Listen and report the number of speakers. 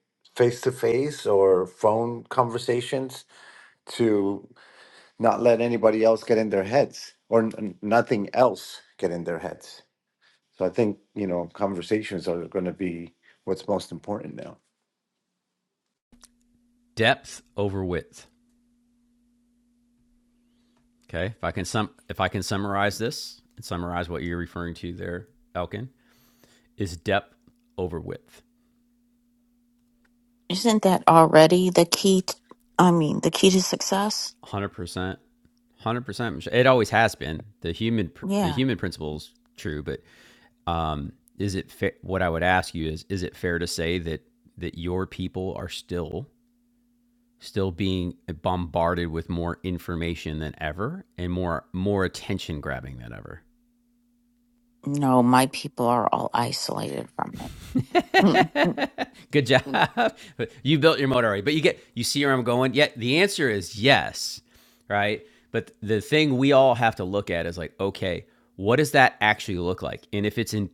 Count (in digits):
3